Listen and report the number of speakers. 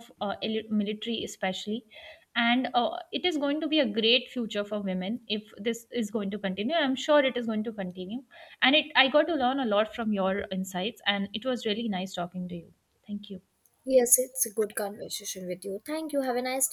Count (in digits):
2